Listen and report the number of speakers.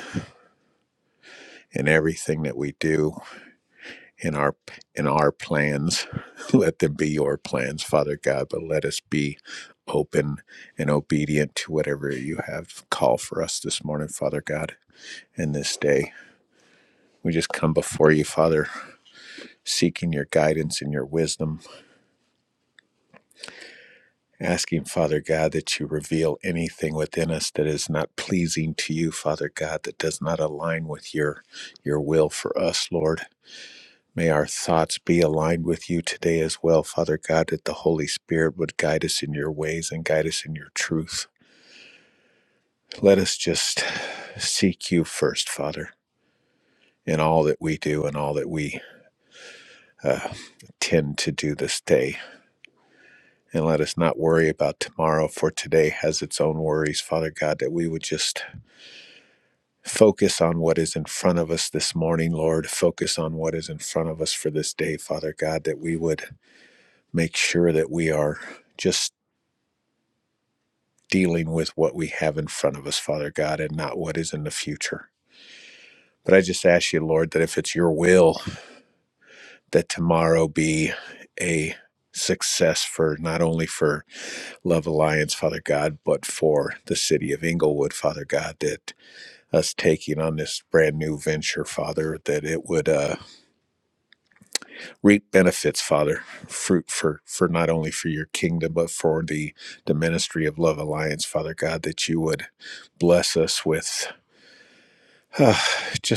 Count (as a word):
one